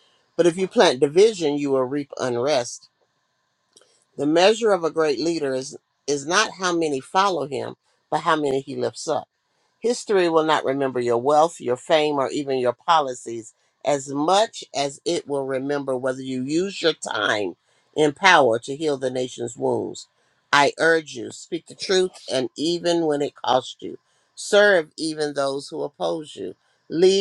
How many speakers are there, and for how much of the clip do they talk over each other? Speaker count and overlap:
1, no overlap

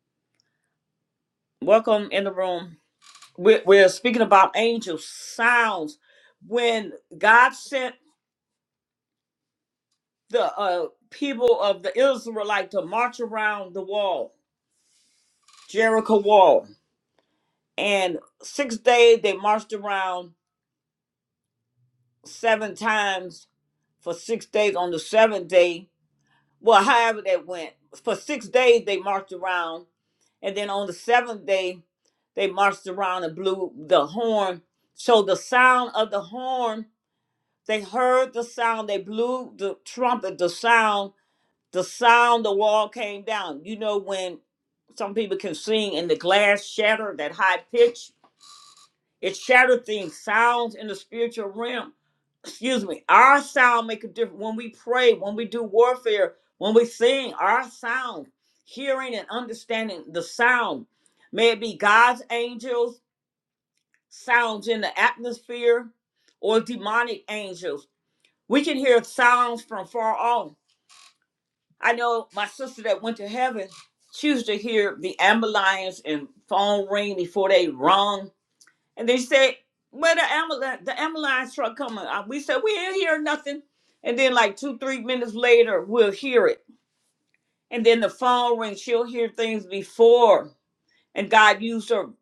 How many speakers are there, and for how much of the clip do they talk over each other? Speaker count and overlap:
1, no overlap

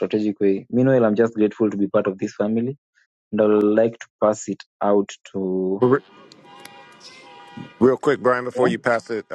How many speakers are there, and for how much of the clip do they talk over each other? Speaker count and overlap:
2, about 2%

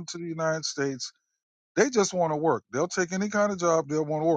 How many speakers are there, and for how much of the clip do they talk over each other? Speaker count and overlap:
1, no overlap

